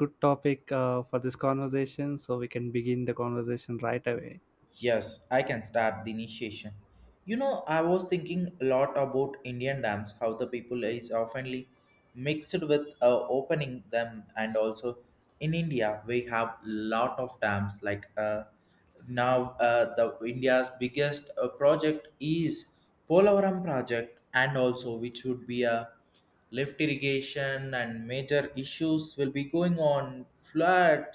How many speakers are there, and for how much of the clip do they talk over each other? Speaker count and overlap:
two, no overlap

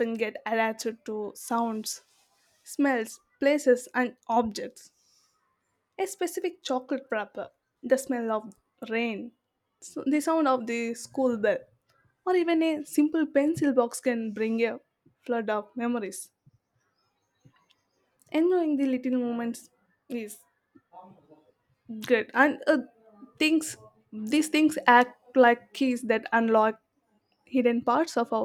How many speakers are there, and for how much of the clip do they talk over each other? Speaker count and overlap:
one, no overlap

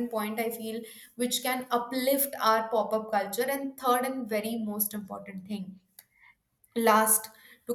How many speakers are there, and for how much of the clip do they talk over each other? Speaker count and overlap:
one, no overlap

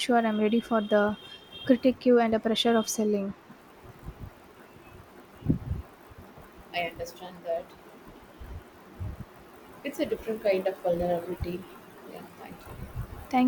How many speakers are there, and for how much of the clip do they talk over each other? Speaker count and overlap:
two, no overlap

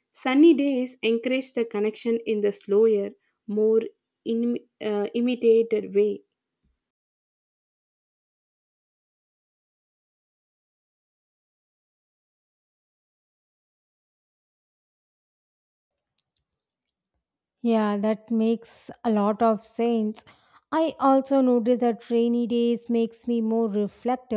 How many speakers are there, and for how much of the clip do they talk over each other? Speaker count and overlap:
two, no overlap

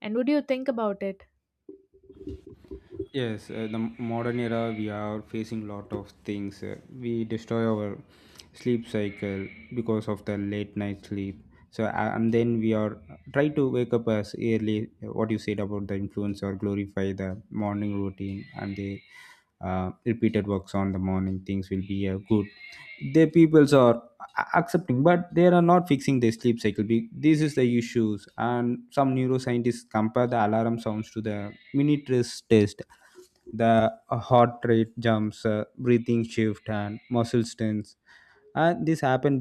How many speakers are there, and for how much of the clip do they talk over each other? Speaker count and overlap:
two, no overlap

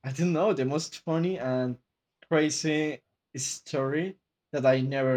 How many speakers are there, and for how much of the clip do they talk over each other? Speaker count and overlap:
one, no overlap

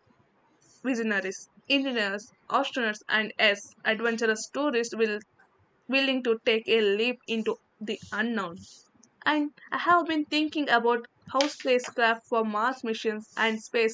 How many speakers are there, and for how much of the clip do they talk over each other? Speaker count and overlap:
one, no overlap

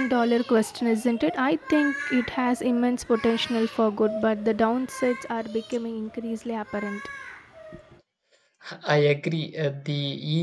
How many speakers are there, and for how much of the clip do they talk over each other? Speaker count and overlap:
two, no overlap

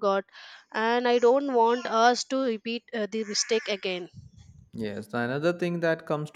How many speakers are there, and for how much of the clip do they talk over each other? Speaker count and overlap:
two, no overlap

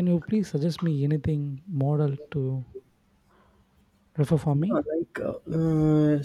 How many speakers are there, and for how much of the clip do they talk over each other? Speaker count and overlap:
two, about 4%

